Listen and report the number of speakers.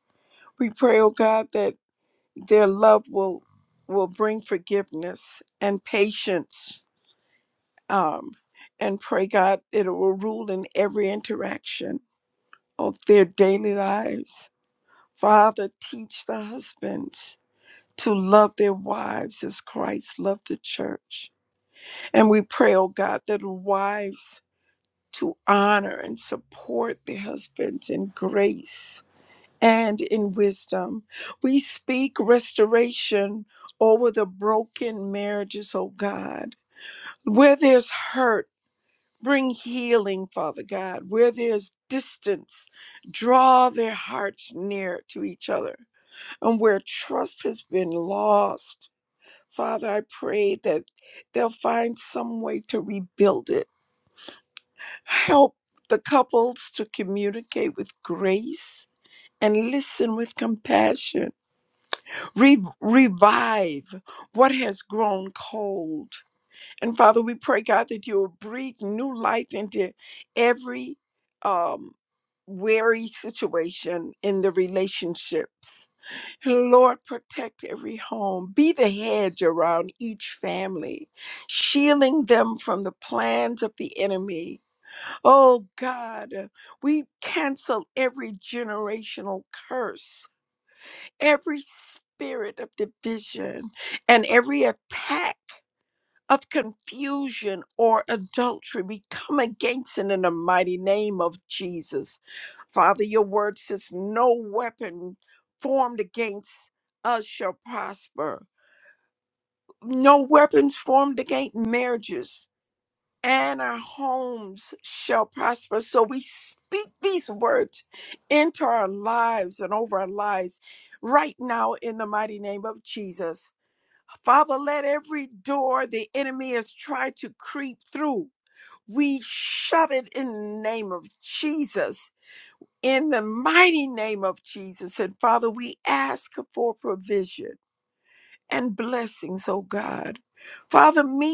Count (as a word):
one